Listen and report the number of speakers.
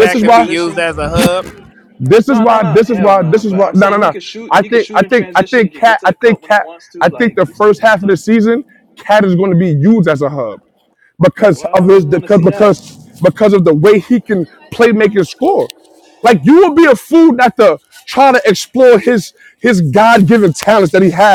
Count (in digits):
3